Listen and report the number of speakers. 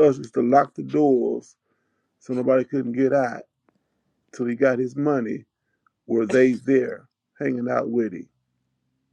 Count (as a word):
one